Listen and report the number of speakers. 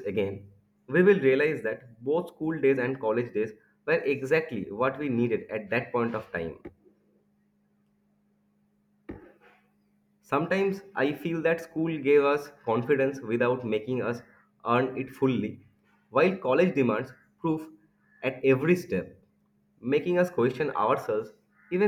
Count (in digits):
1